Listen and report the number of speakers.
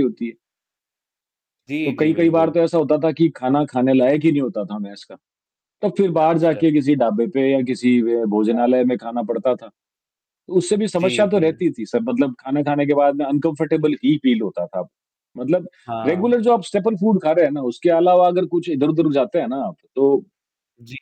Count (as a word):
two